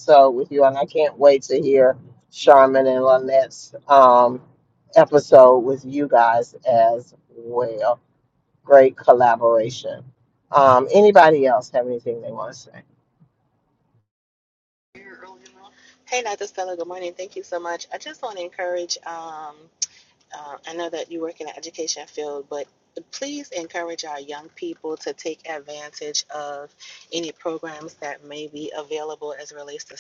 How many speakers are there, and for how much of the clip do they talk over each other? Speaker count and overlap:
2, no overlap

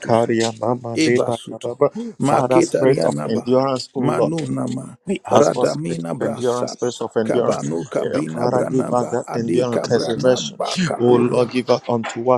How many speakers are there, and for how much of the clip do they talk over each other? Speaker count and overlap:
2, about 65%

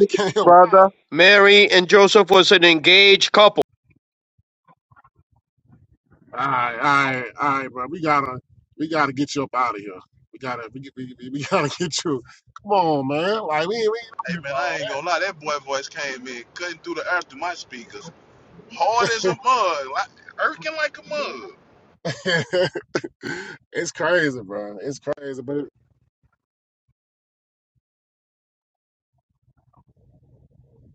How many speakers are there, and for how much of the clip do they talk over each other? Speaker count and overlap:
3, about 5%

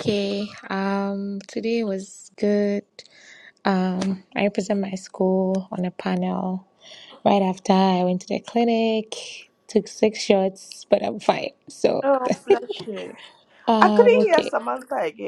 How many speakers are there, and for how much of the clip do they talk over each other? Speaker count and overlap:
2, about 5%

